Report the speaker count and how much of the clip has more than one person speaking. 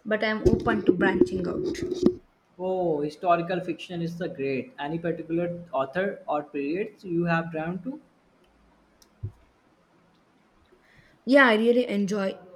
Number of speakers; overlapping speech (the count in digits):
2, no overlap